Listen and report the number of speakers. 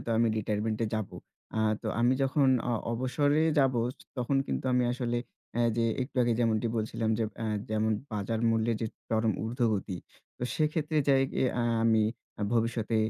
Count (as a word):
one